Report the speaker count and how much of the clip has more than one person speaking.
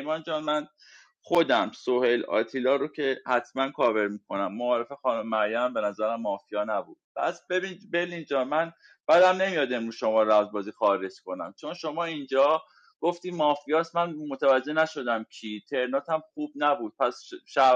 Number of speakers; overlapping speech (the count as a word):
one, no overlap